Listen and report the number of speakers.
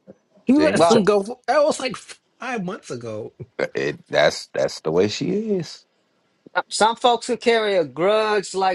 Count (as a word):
three